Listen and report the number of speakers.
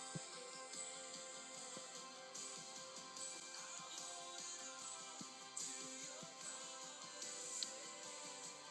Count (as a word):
zero